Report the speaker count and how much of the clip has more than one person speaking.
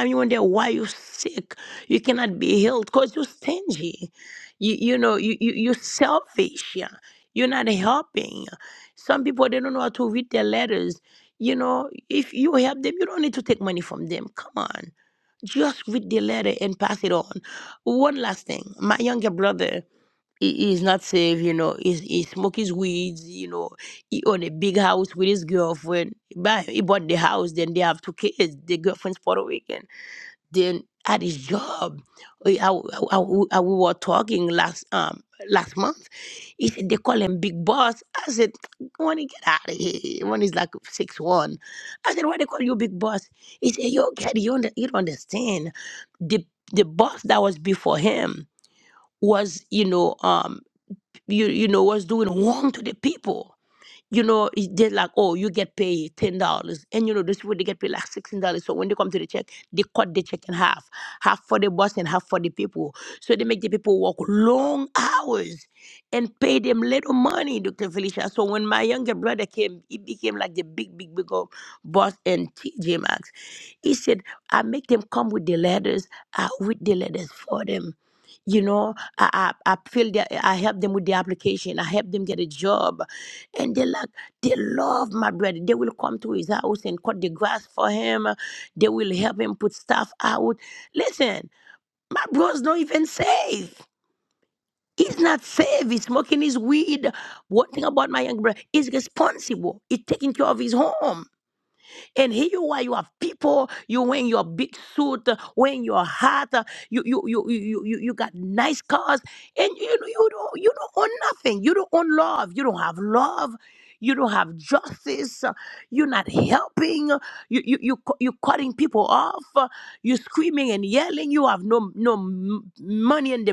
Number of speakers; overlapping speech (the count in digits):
1, no overlap